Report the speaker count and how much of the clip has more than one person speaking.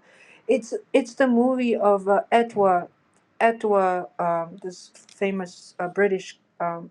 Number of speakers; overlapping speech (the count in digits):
1, no overlap